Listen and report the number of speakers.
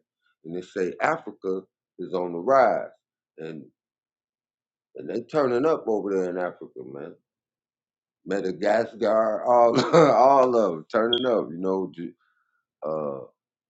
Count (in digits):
1